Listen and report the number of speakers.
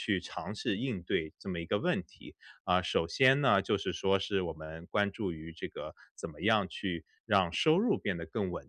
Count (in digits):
1